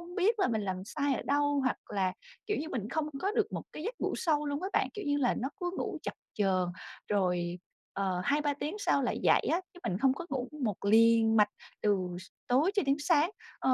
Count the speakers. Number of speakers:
1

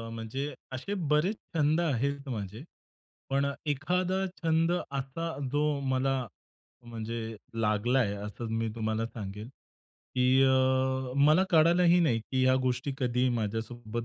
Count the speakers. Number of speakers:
1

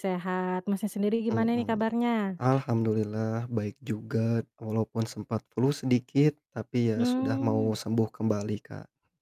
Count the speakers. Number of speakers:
2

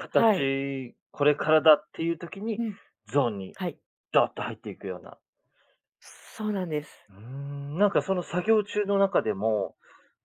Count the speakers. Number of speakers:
2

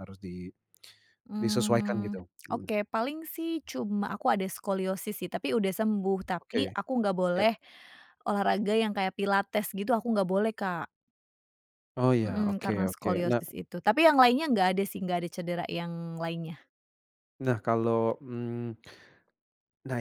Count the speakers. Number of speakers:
2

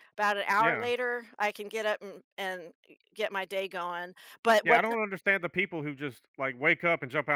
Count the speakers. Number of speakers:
2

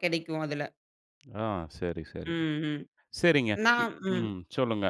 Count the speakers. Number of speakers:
2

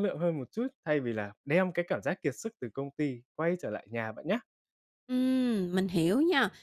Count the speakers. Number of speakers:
2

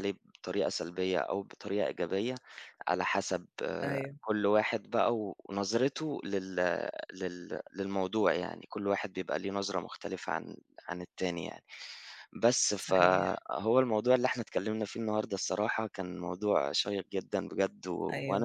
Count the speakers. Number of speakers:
2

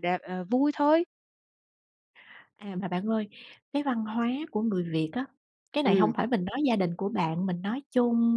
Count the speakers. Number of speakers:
2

